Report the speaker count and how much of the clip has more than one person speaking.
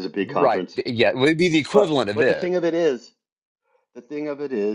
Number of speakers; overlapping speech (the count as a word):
two, about 26%